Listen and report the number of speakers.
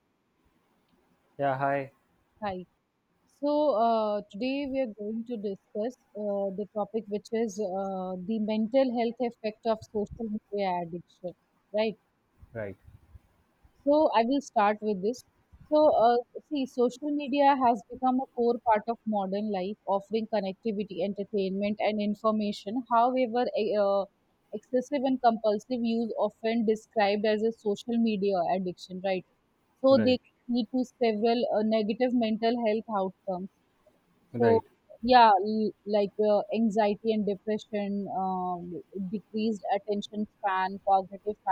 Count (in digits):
2